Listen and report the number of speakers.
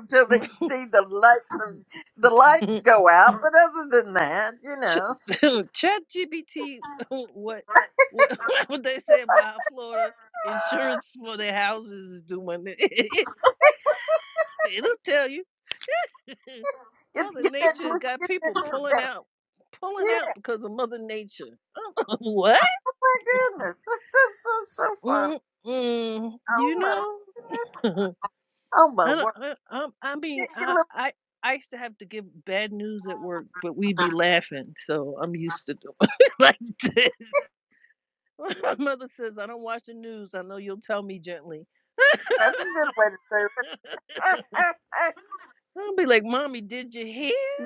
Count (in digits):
2